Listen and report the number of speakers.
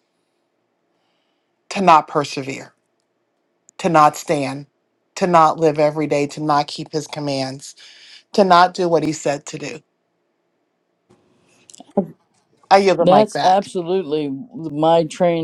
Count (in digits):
2